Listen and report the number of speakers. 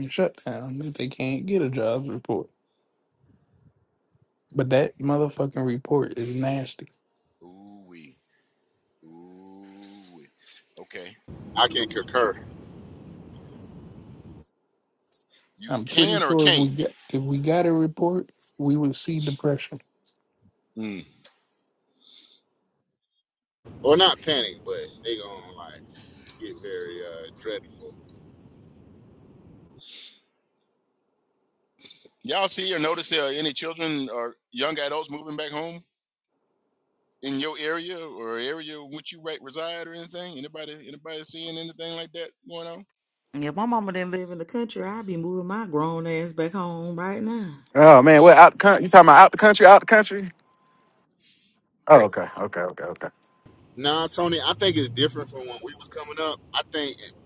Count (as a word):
five